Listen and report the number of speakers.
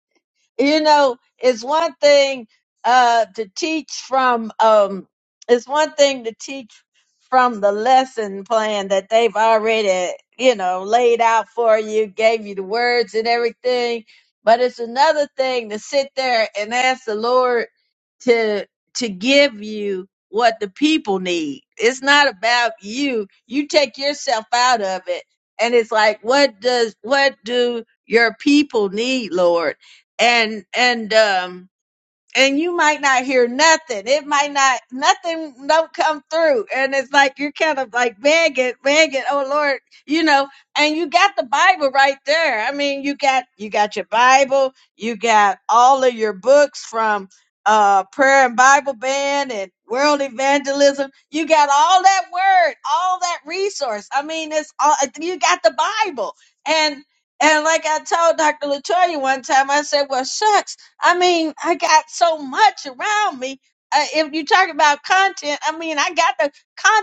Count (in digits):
1